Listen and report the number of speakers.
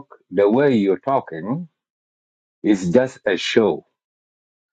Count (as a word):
one